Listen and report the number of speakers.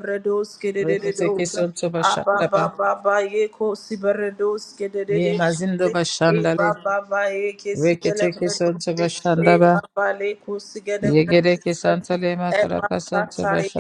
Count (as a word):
two